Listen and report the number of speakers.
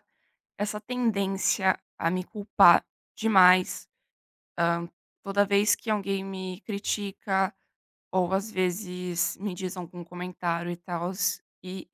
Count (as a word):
one